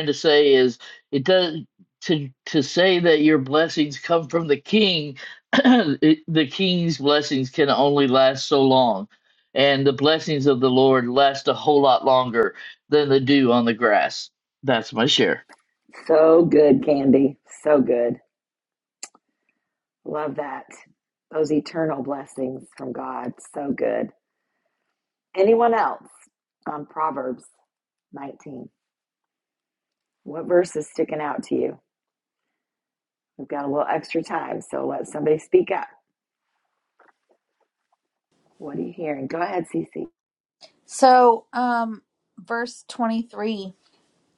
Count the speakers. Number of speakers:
3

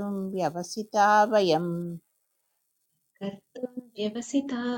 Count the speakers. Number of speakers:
2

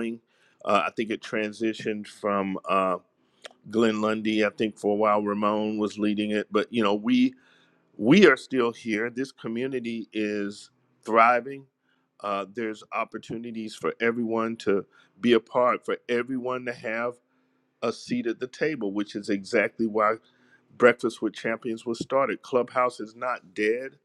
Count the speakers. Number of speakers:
1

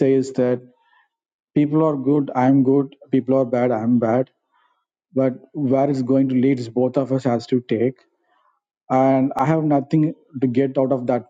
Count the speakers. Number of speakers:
1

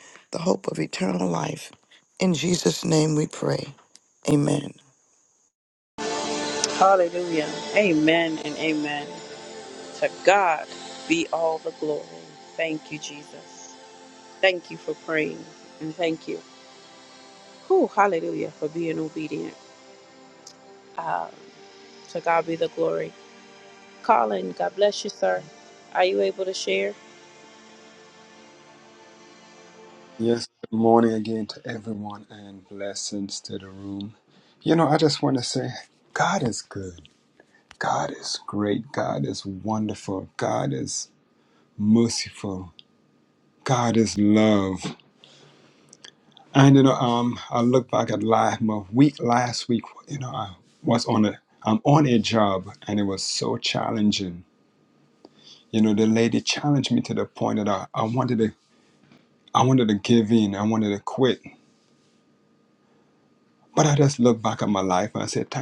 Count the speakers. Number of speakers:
3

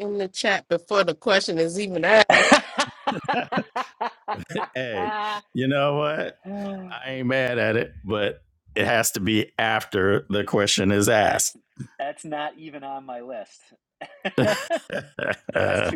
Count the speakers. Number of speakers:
3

